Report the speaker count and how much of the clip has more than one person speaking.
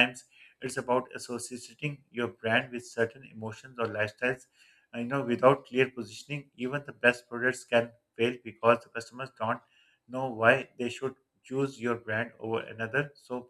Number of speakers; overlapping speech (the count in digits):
1, no overlap